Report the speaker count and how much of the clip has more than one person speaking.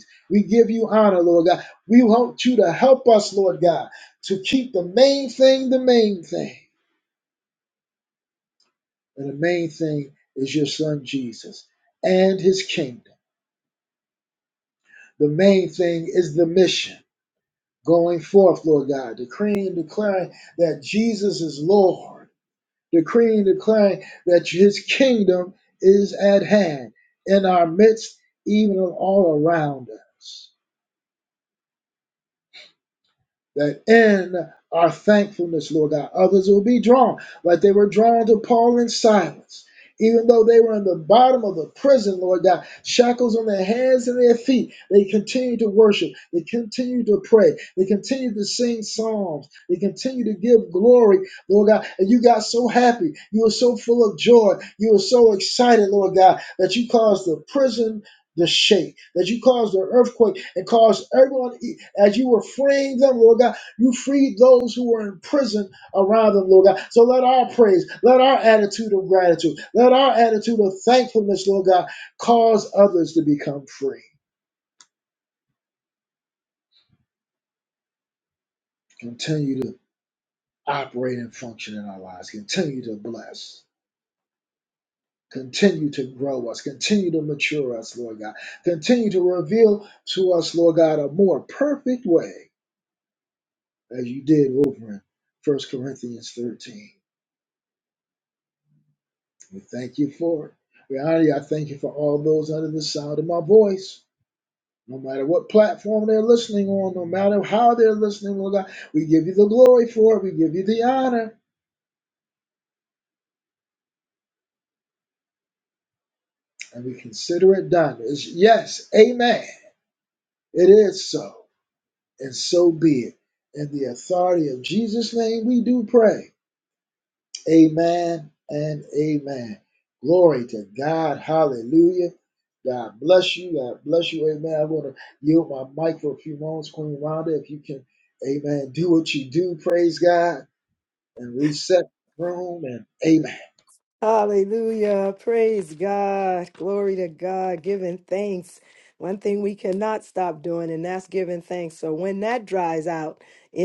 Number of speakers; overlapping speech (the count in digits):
2, no overlap